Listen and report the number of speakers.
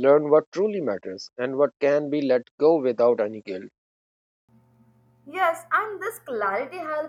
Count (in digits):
2